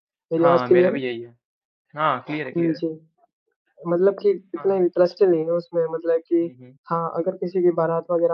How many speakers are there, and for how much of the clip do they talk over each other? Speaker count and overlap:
2, about 14%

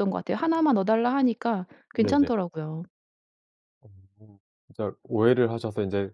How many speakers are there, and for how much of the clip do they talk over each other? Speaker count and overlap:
2, about 5%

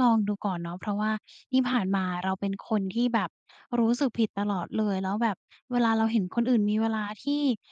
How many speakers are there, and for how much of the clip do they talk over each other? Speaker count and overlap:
1, no overlap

